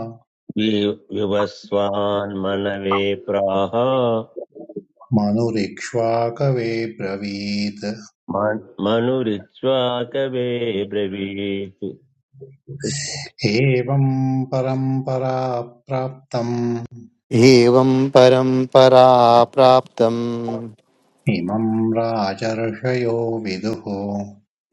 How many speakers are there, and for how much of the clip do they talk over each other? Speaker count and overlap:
3, no overlap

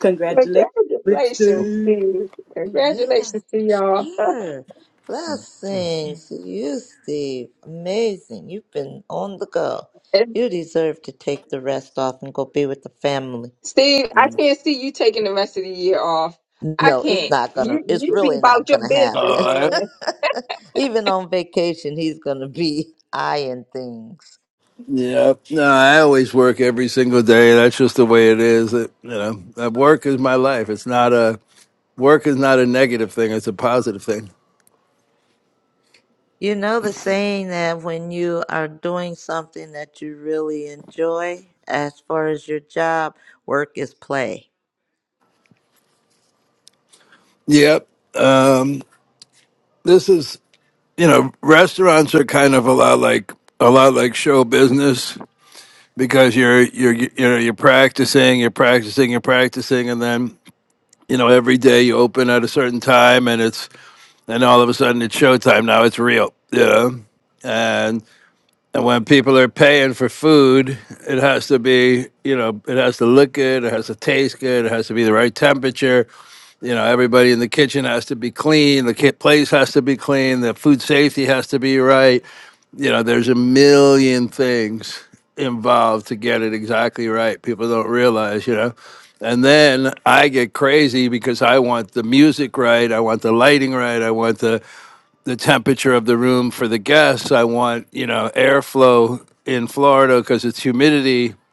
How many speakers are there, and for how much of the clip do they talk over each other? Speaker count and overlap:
4, about 5%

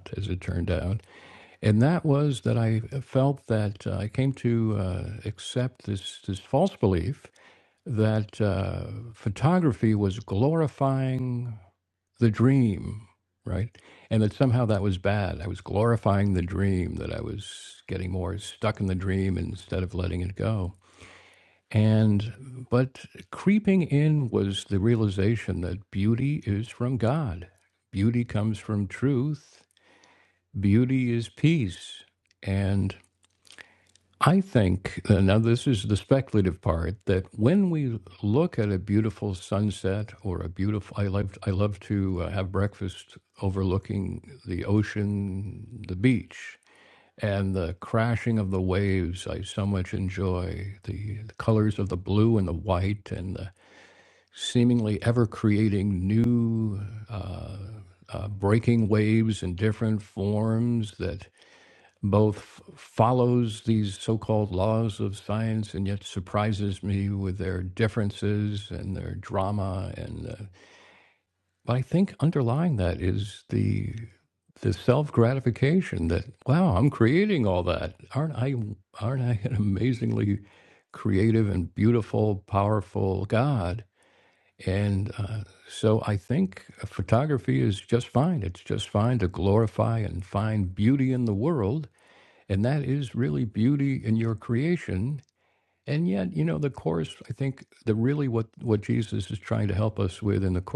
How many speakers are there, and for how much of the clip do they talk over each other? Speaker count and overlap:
1, no overlap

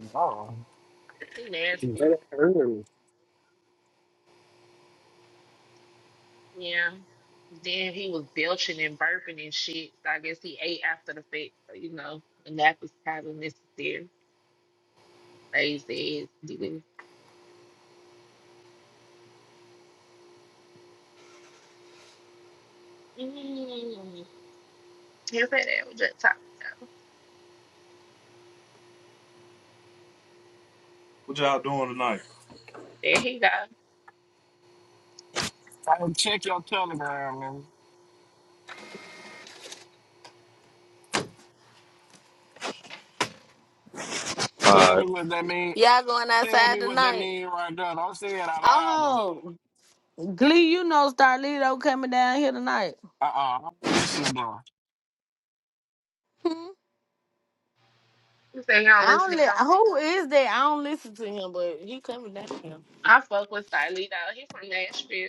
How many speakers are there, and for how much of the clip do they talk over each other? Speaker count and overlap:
4, about 4%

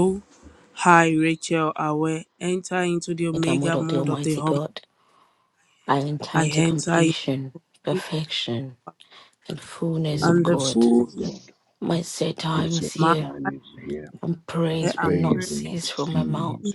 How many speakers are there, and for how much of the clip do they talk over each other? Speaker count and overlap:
3, about 36%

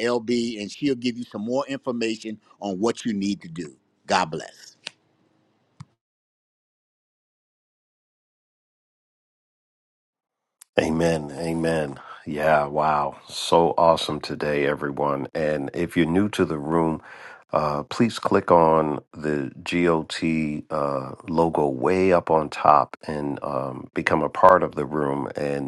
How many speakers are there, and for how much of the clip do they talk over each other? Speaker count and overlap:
2, no overlap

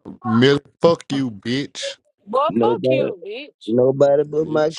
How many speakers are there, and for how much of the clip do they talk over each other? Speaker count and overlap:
3, about 23%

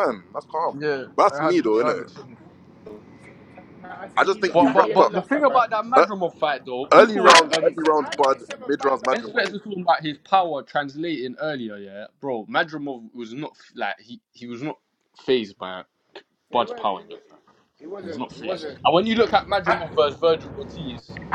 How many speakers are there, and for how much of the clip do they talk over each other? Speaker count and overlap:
3, about 33%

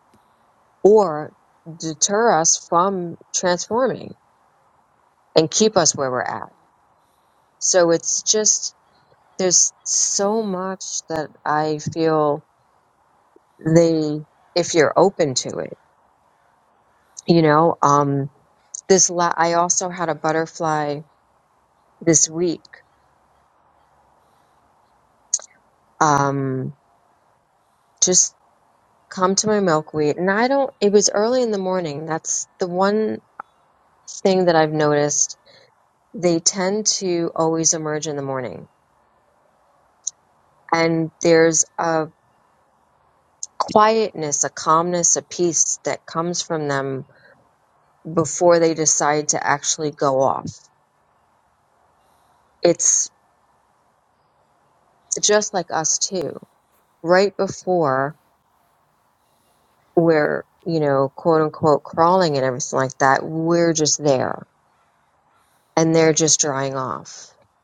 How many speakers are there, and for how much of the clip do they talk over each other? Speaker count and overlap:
1, no overlap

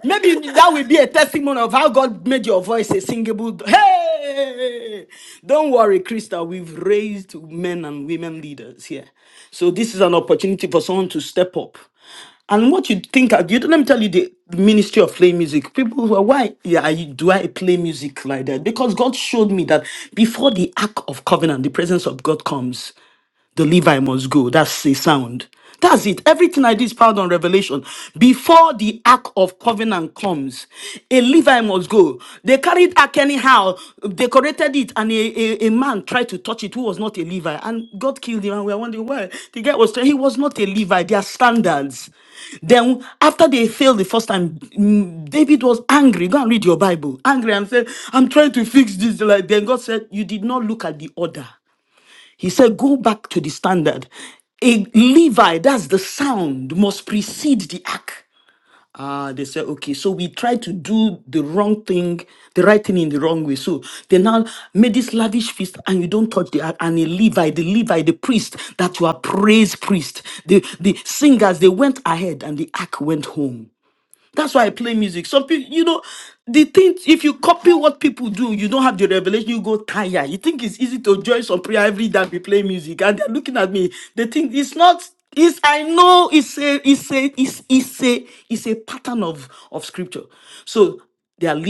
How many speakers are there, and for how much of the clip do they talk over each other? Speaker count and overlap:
1, no overlap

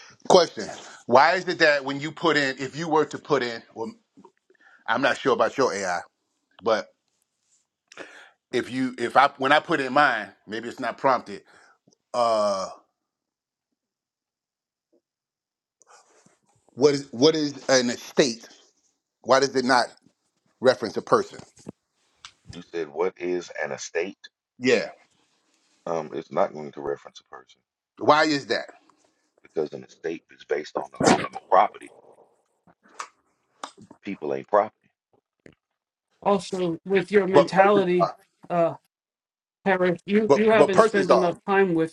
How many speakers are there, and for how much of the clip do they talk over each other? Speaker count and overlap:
3, about 4%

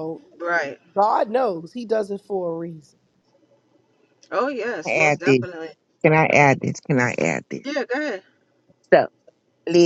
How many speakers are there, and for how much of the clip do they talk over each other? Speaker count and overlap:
3, about 6%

